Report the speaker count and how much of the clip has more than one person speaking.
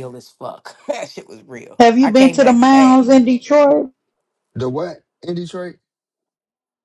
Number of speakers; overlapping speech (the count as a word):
three, about 18%